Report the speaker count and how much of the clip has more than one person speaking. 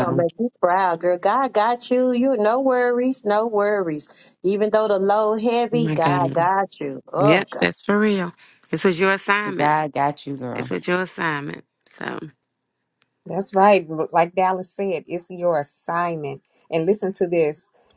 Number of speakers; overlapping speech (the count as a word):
four, about 11%